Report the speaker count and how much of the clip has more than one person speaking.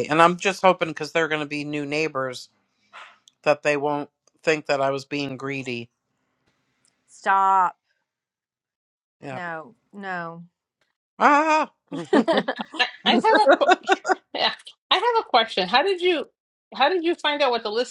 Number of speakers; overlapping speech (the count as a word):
three, under 1%